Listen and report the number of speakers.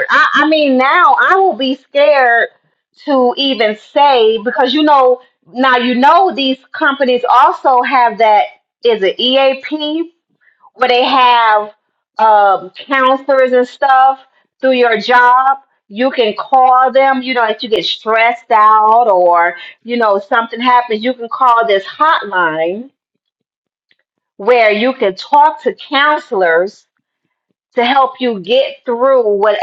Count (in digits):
1